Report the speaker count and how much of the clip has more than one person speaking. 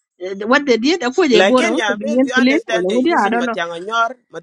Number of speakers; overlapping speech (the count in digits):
2, about 51%